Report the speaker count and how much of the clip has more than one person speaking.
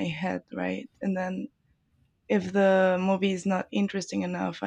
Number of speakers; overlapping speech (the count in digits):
1, no overlap